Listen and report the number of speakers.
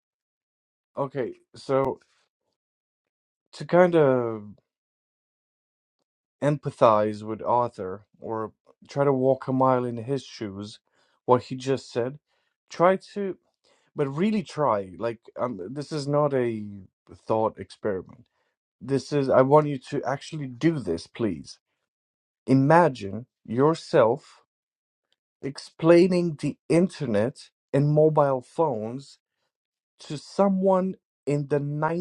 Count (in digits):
1